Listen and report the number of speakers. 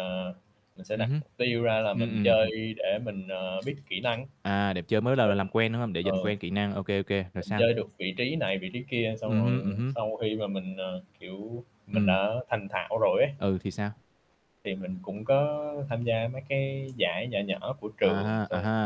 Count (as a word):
two